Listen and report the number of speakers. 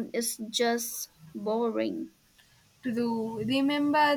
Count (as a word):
two